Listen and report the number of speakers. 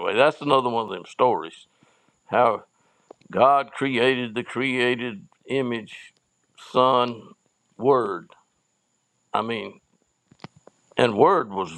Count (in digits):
1